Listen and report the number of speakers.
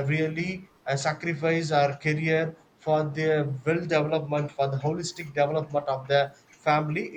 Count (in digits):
1